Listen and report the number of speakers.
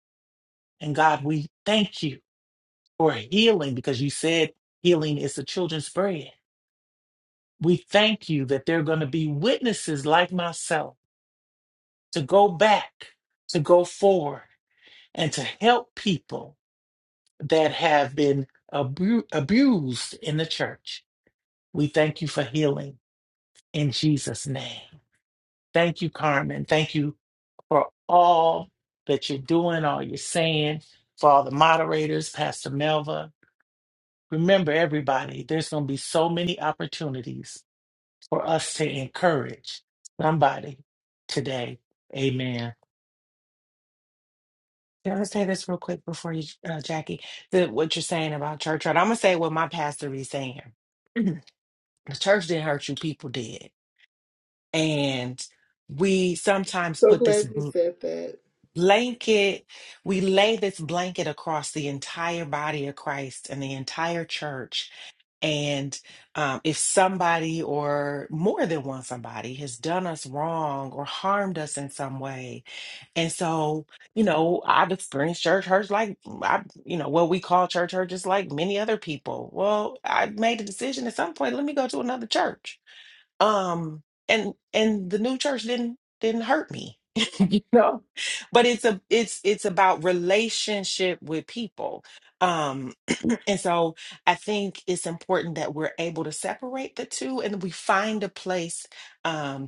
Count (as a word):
three